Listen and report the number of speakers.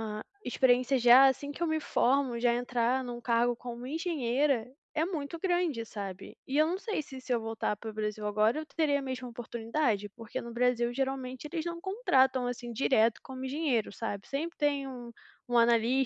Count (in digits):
1